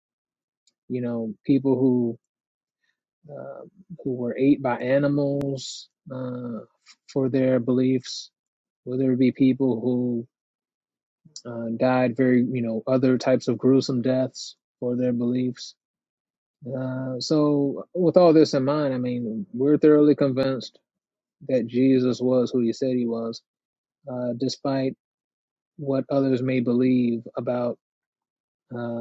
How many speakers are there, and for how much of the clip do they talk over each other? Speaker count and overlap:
1, no overlap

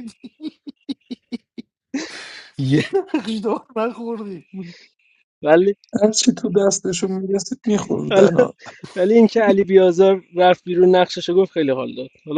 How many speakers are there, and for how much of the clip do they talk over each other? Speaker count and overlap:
3, about 2%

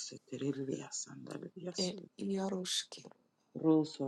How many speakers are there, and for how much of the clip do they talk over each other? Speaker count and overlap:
2, about 7%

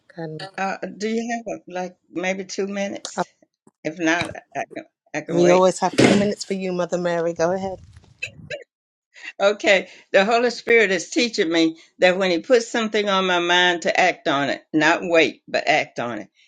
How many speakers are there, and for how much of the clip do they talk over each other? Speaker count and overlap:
2, about 2%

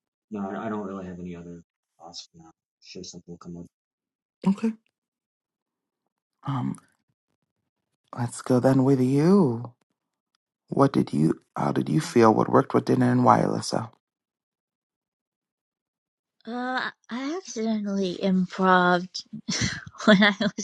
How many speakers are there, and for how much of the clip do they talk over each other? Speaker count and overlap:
3, no overlap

